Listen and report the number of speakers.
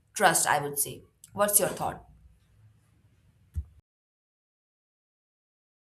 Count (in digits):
1